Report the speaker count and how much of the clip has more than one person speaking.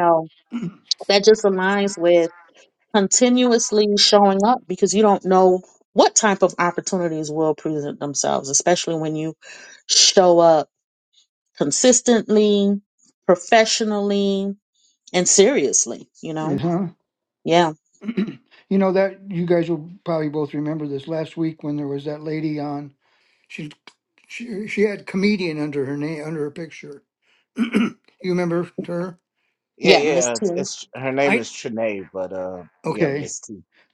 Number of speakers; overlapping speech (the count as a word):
three, about 5%